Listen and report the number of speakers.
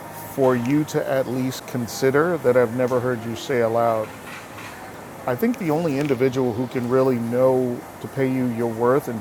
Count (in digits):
1